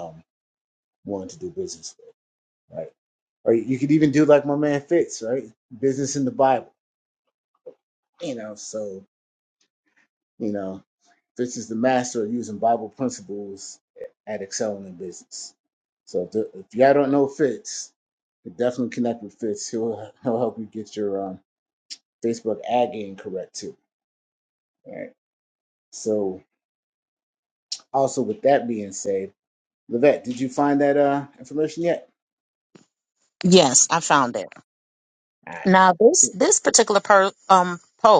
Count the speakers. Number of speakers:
2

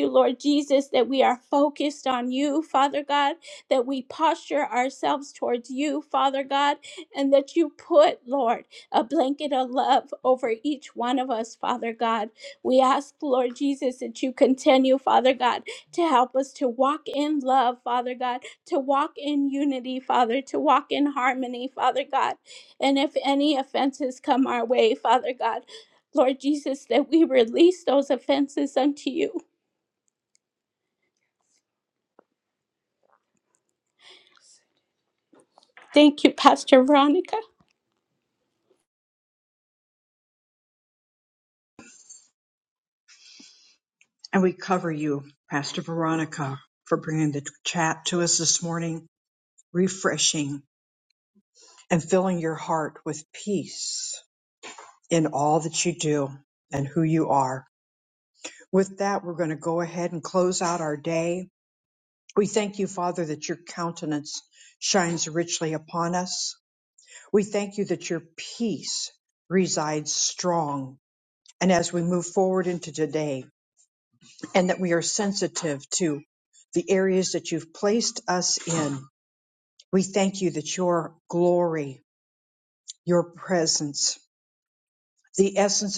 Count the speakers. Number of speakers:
2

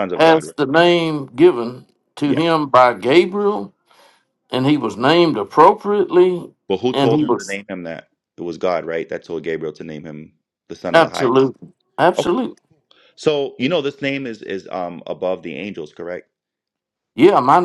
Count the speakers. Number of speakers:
2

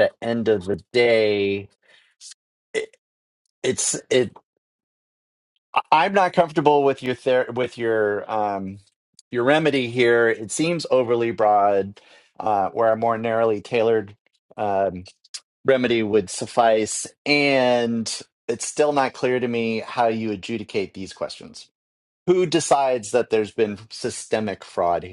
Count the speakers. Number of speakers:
1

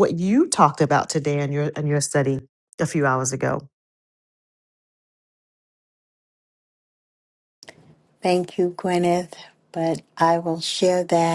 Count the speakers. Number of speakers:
2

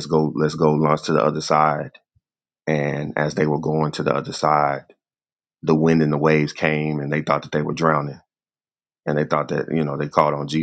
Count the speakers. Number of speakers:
1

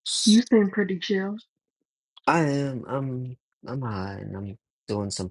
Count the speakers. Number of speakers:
2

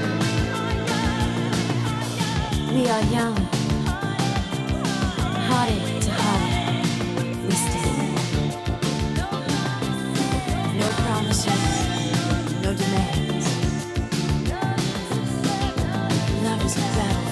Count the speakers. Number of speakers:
0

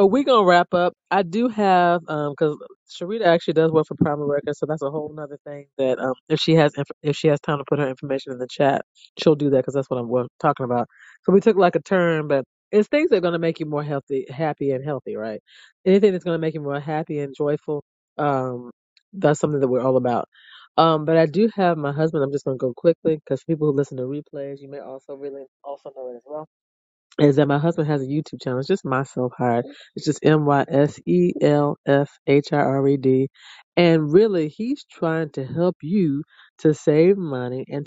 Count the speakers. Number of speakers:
1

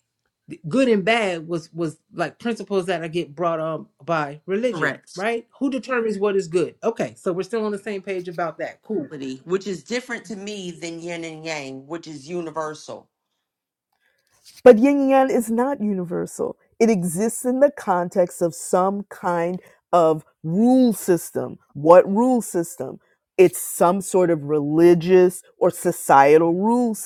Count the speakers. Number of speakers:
3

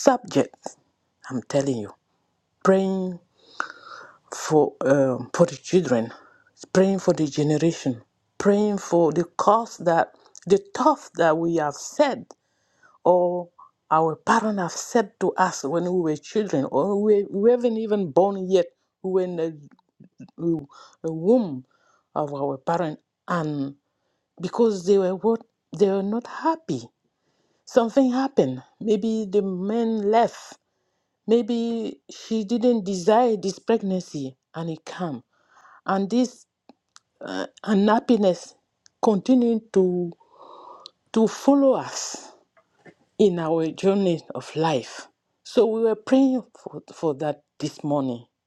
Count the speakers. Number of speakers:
1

